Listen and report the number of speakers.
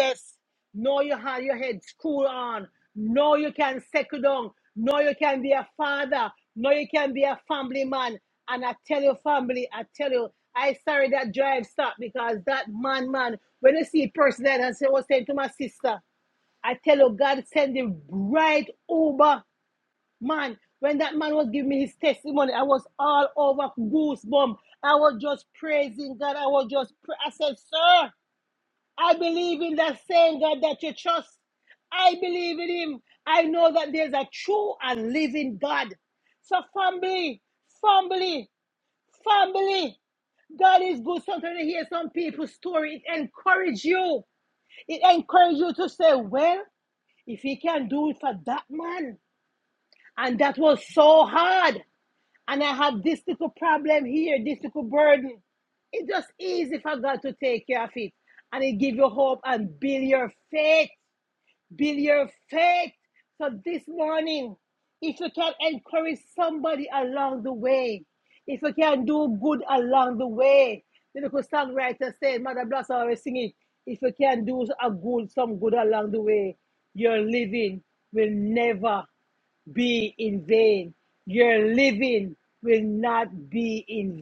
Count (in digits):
1